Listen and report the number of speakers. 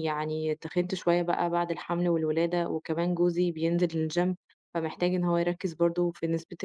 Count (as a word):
one